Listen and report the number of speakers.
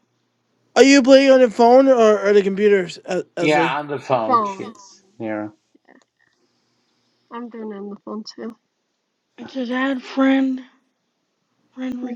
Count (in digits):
4